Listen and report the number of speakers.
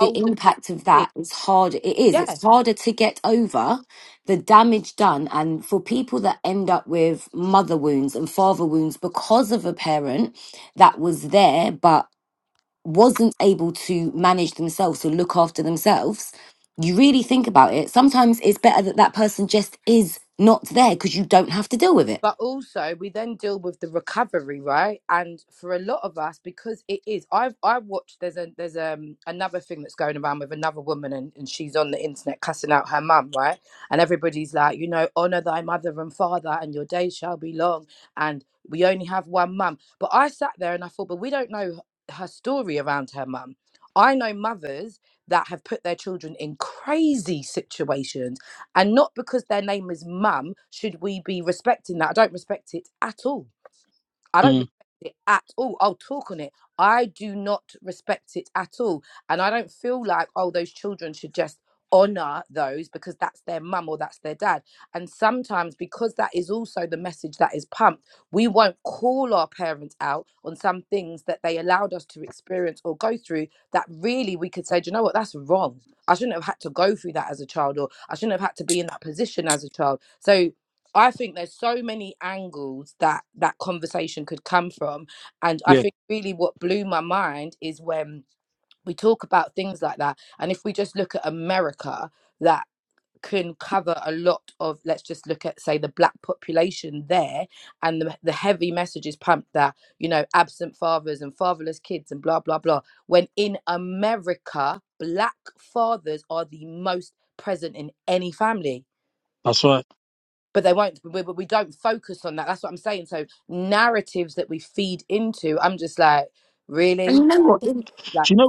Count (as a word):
three